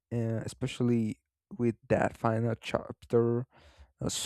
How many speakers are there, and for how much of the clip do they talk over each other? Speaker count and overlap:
one, no overlap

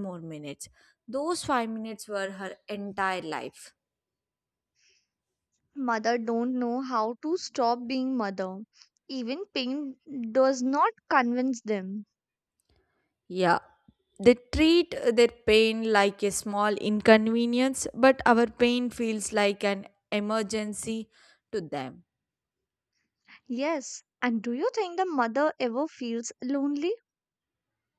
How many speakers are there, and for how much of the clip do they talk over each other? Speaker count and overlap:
two, no overlap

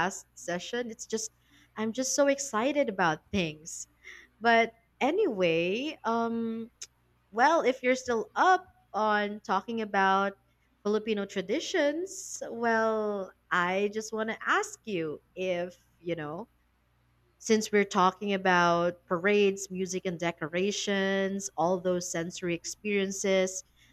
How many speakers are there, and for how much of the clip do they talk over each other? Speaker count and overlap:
one, no overlap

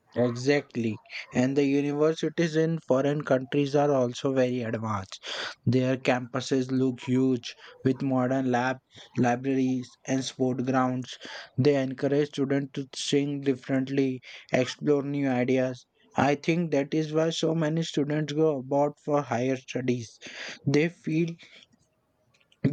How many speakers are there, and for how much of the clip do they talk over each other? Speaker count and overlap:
one, no overlap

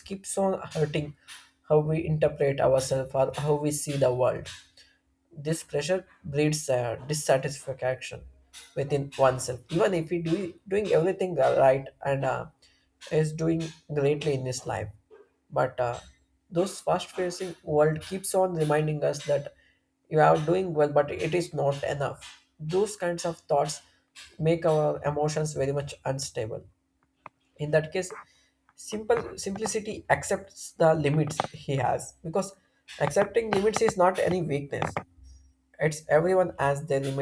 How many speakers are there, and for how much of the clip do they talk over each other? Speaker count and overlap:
one, no overlap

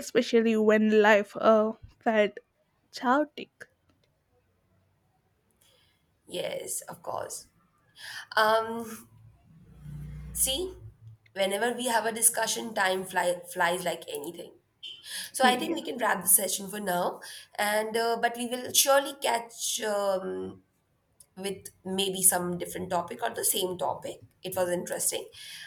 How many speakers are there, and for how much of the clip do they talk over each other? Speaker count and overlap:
two, about 1%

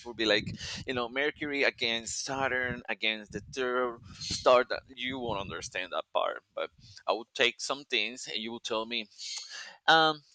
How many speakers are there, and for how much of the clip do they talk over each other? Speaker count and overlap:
one, no overlap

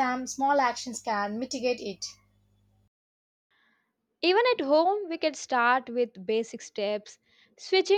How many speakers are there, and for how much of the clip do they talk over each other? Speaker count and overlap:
two, no overlap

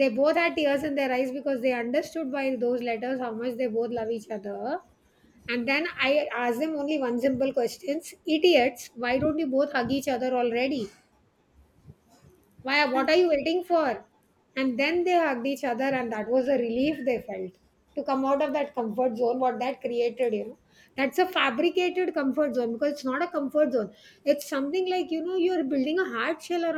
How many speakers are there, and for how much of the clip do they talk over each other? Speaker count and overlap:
one, no overlap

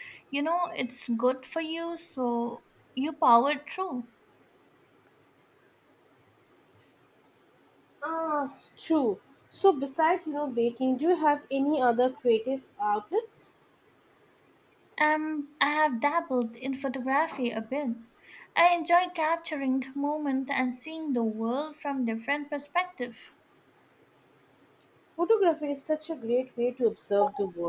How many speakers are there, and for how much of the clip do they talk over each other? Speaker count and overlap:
two, no overlap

